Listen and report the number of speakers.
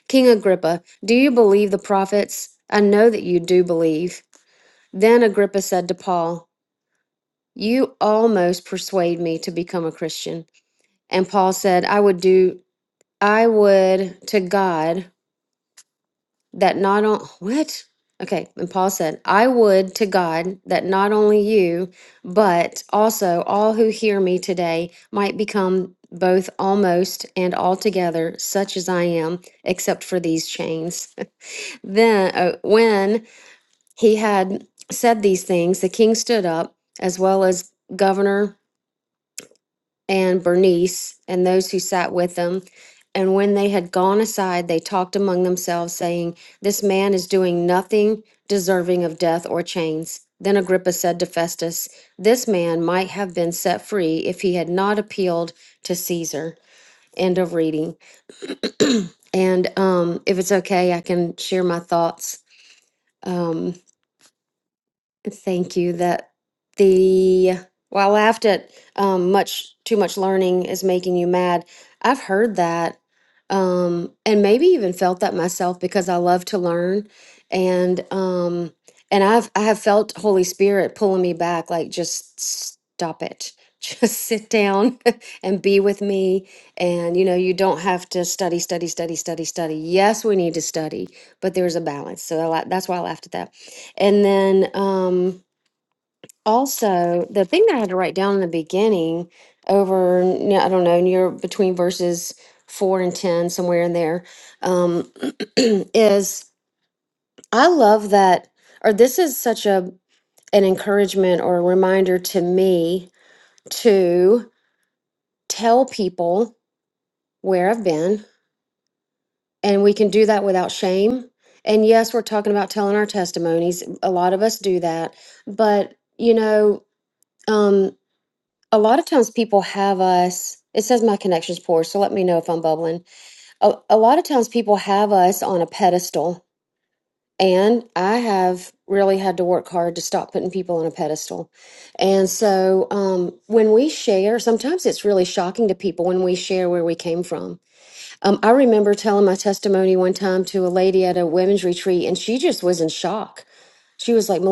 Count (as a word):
one